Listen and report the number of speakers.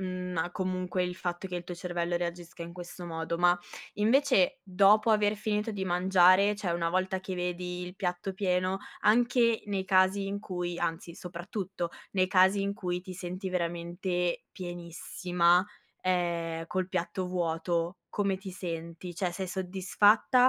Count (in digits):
1